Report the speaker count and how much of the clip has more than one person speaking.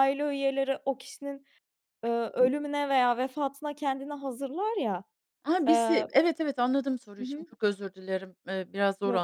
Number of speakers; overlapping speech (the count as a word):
two, about 6%